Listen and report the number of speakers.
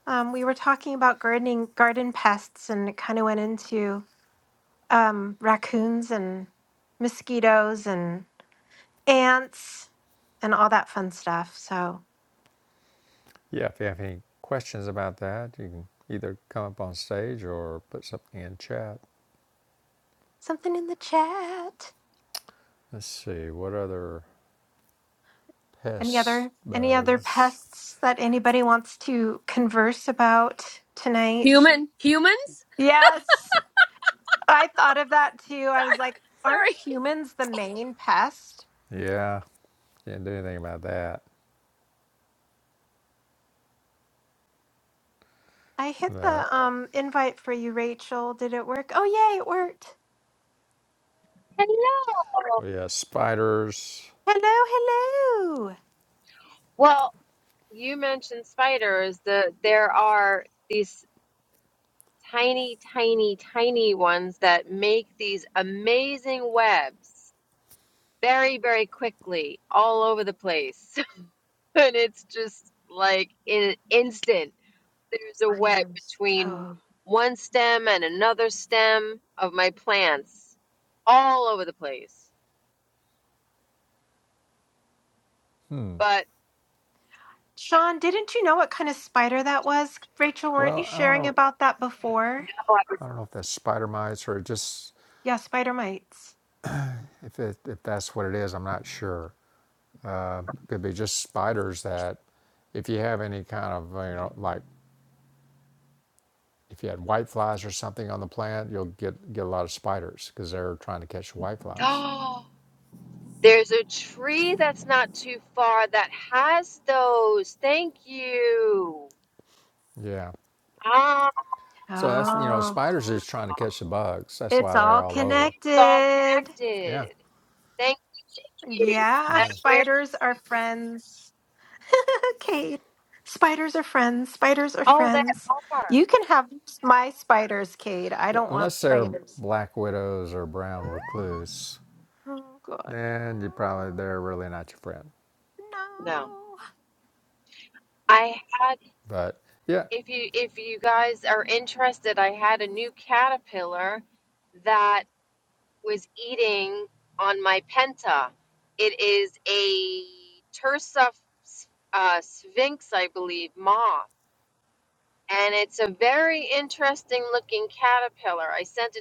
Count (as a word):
four